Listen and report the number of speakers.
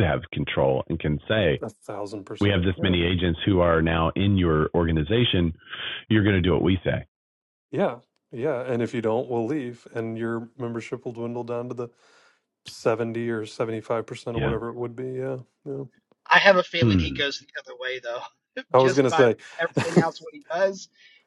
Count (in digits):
3